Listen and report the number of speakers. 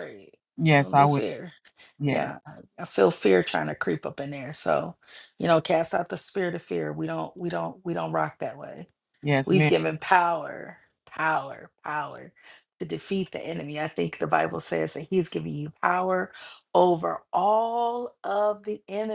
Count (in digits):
2